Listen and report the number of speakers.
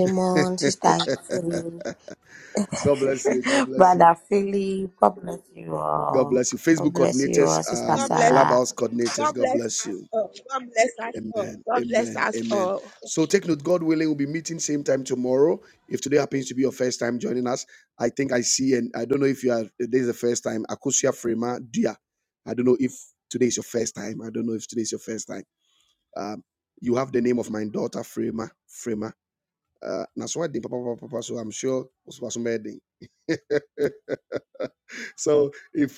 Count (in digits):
3